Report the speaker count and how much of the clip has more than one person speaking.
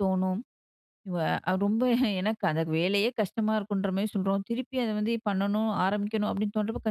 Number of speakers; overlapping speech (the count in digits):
1, no overlap